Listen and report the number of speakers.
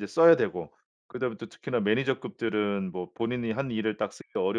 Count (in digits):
1